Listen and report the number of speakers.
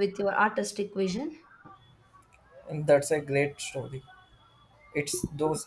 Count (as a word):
two